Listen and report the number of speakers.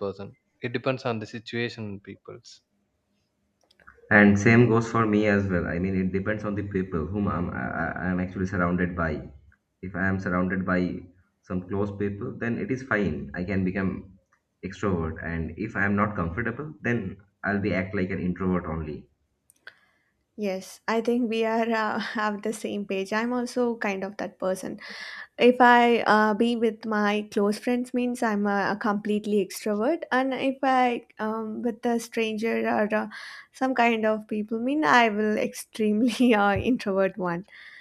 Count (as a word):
three